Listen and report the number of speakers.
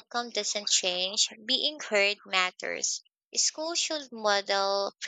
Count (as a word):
one